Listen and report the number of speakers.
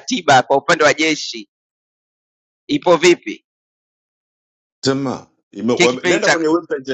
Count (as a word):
two